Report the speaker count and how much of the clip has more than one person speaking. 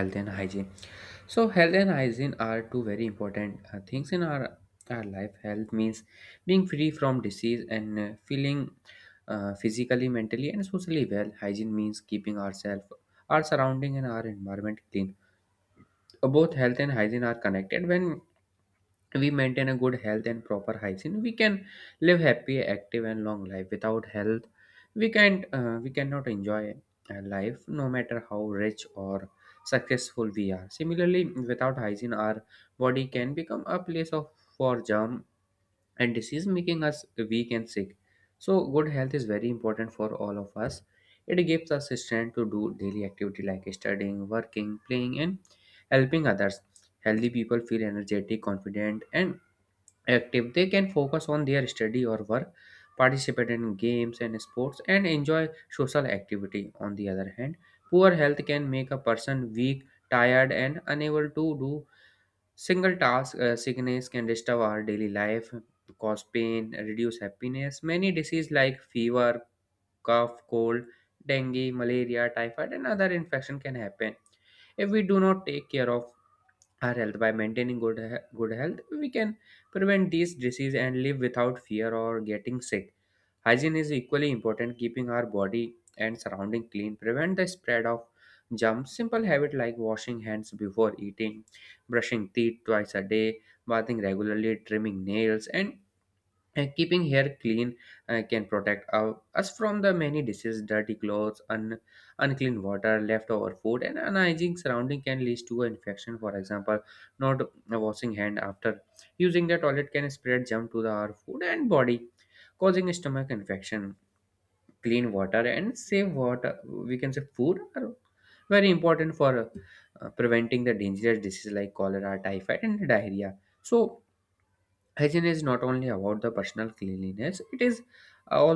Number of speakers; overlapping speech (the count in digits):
1, no overlap